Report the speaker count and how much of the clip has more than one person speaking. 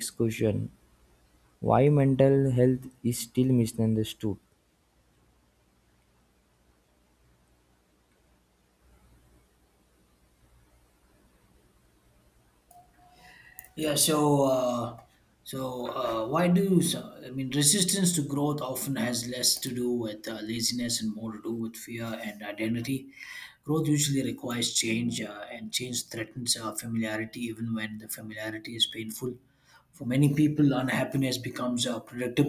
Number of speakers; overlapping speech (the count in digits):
2, no overlap